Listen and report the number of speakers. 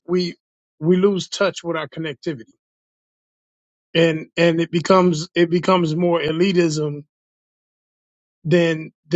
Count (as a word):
one